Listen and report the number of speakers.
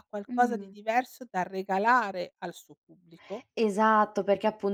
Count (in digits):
2